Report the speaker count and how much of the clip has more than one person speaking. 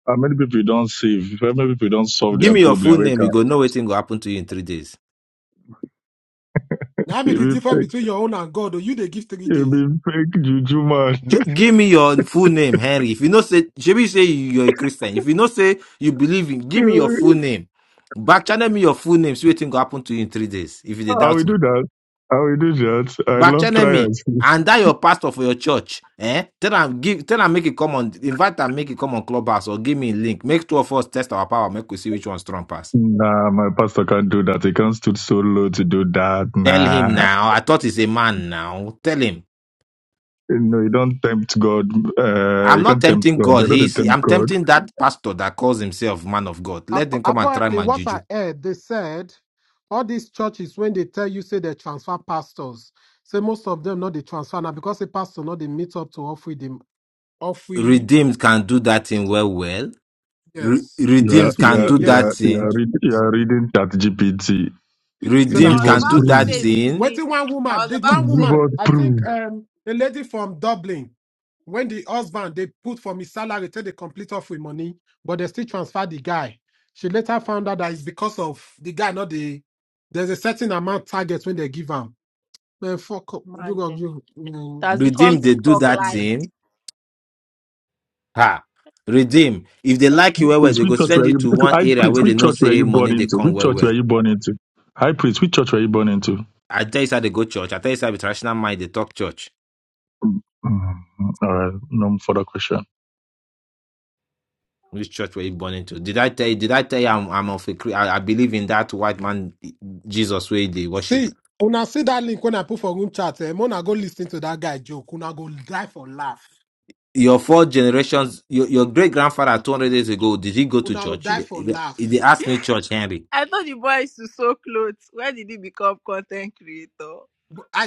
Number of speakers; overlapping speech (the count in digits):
4, about 14%